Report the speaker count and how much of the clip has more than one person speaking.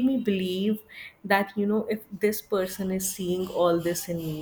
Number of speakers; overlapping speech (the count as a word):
one, no overlap